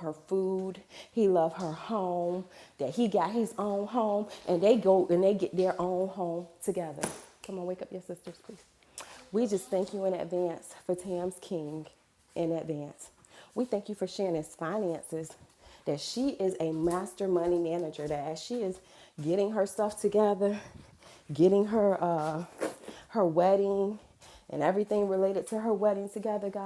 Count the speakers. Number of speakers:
one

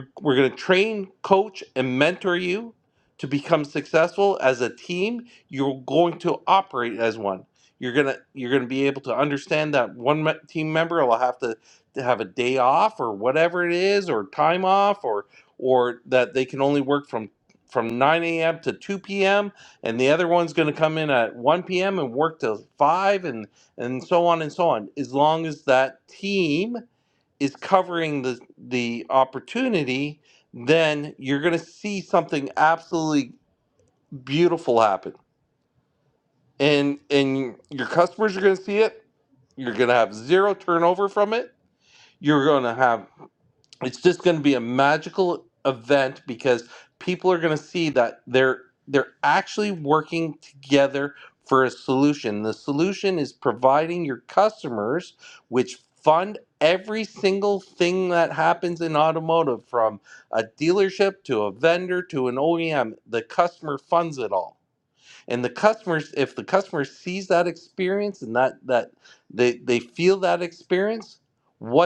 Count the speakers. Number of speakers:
one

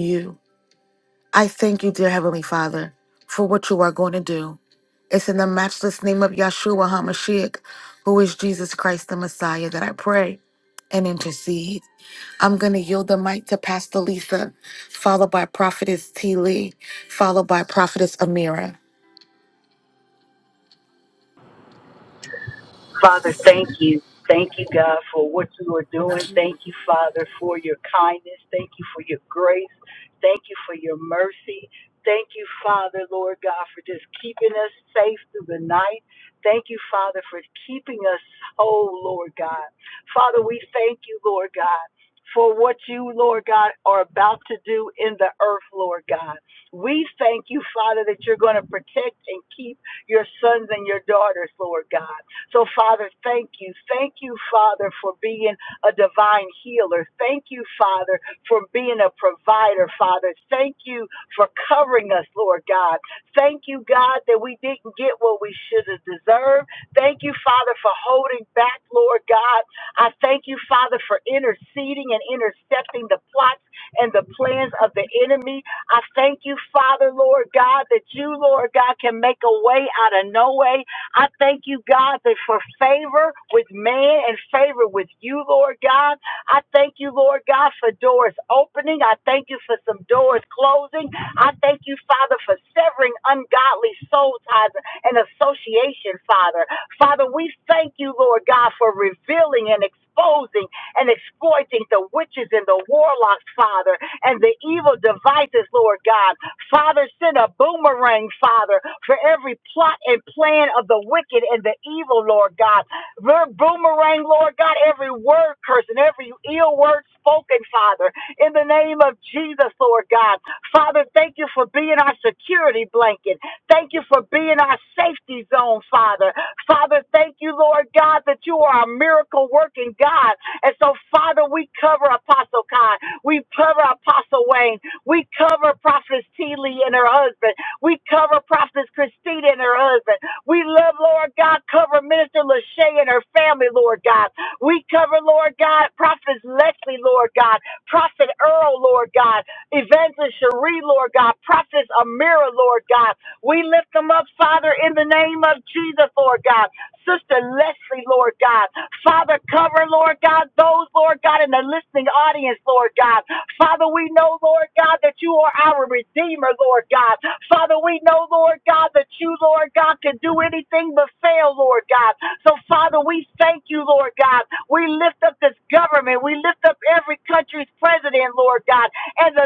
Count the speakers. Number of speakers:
two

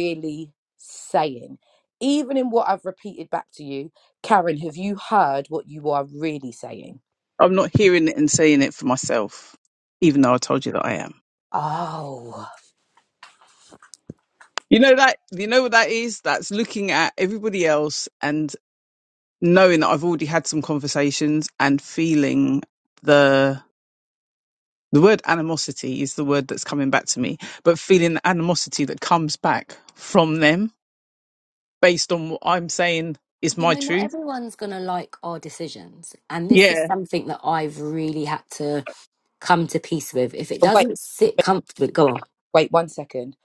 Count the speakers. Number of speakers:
three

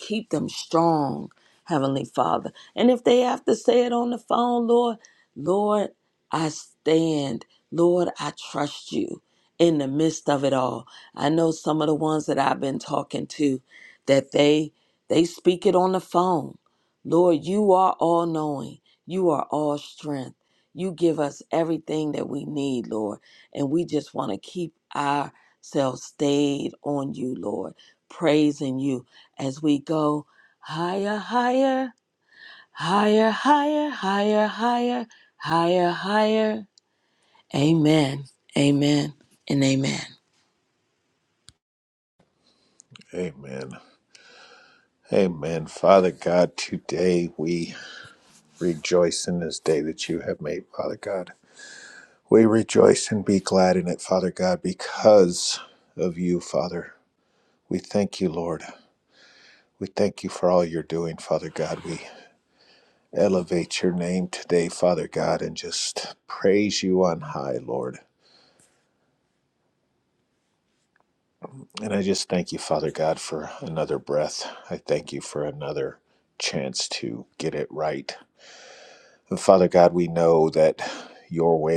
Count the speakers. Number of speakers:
two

